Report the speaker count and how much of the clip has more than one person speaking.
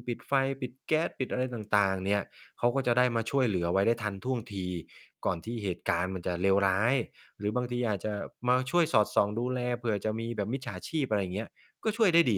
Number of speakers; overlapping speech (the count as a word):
one, no overlap